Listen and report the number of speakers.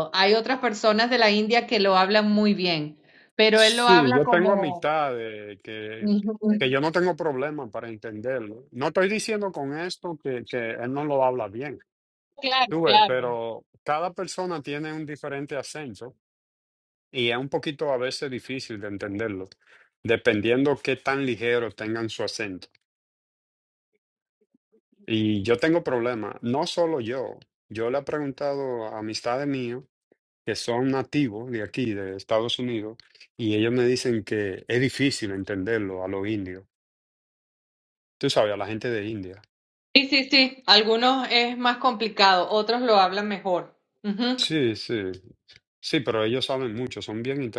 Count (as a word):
two